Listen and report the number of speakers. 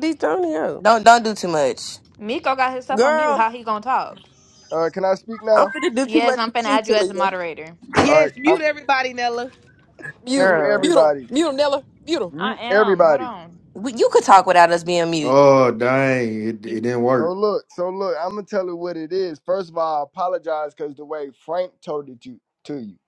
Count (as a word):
seven